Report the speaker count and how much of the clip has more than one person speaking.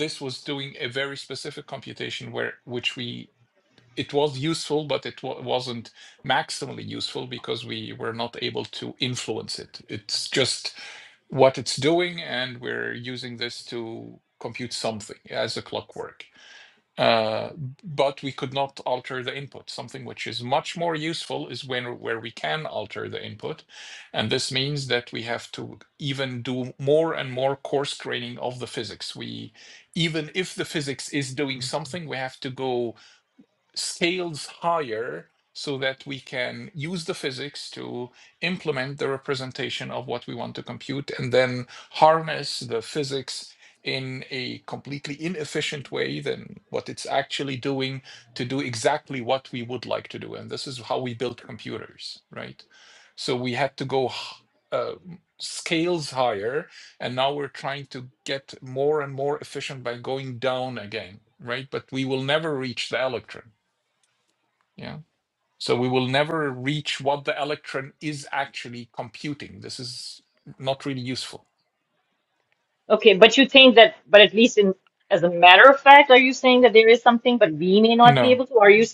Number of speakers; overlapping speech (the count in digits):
2, about 1%